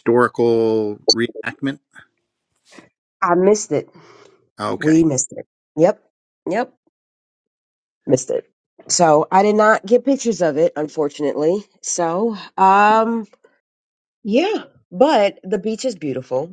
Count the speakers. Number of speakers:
2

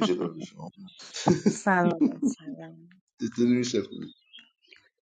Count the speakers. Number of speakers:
2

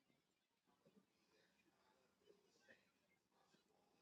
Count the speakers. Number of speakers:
0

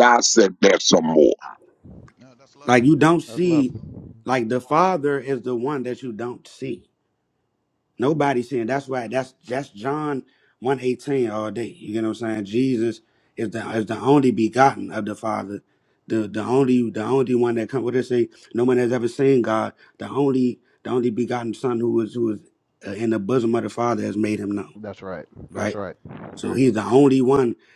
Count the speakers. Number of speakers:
3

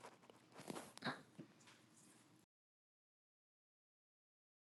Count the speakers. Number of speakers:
0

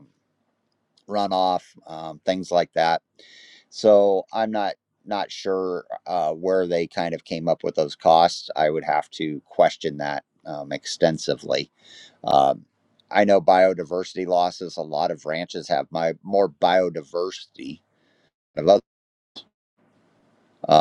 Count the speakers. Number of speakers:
1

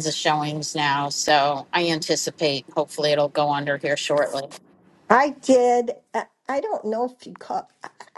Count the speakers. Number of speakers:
2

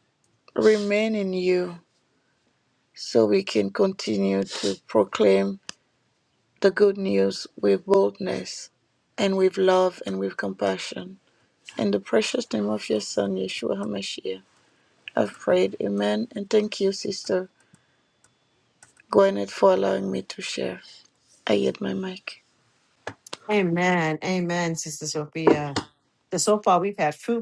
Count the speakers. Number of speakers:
2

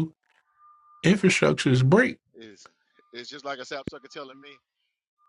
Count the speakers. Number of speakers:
2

